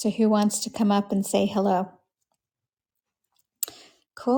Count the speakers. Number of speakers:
one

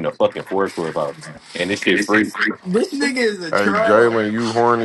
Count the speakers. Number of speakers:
three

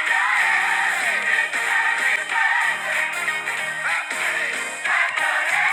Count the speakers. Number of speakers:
zero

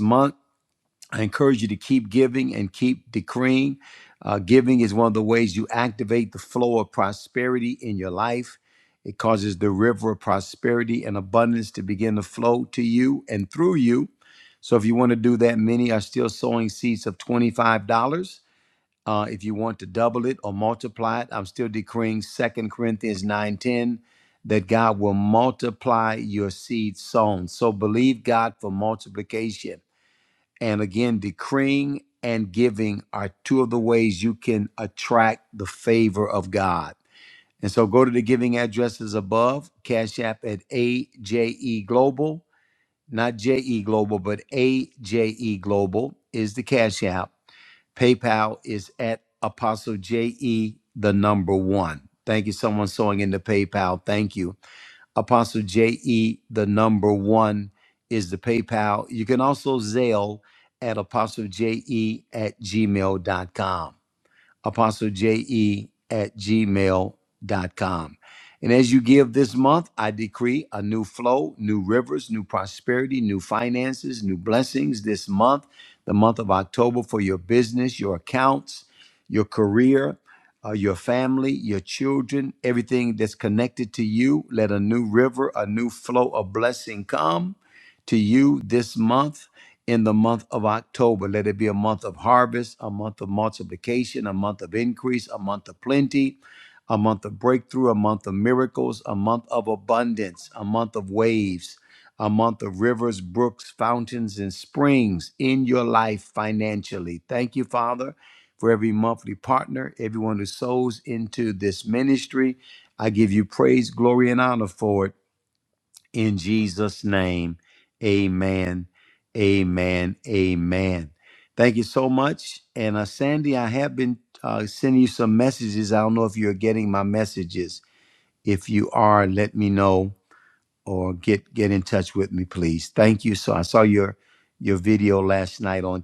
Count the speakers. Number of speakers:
one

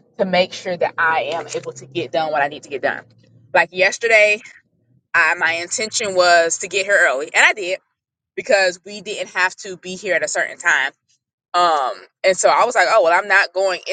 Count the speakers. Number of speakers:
one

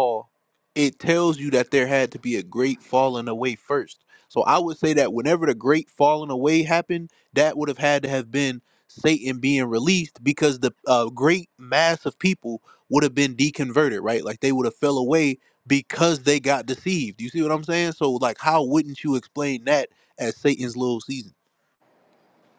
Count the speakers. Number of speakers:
one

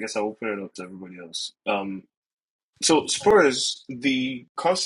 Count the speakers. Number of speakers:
one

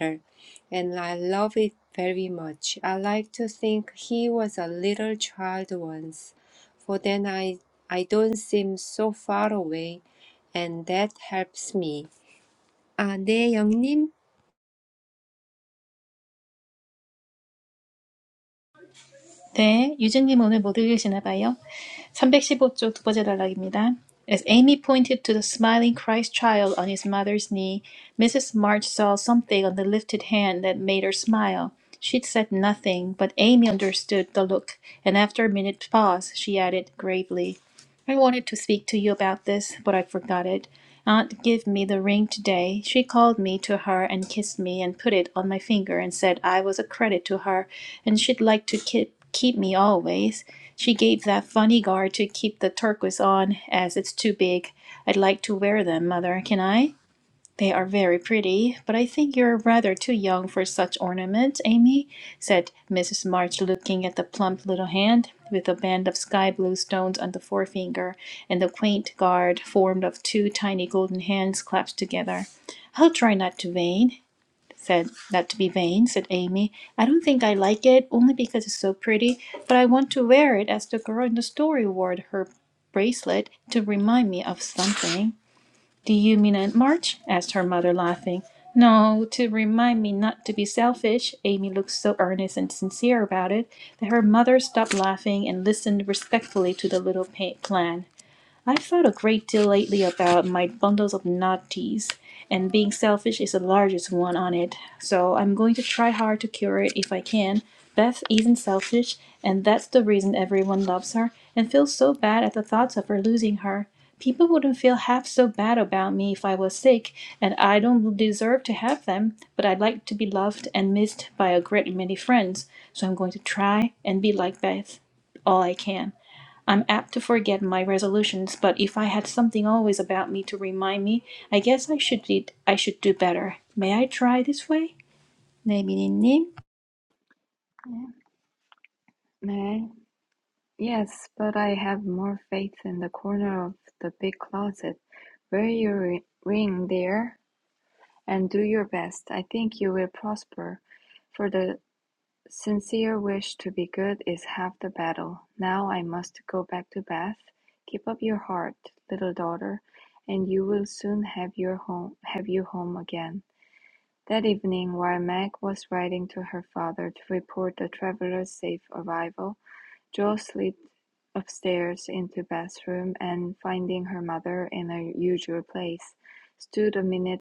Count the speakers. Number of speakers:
three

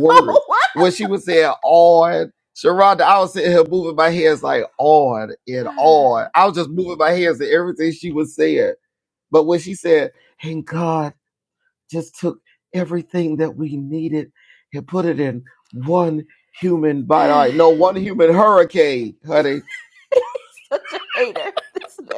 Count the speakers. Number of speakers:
two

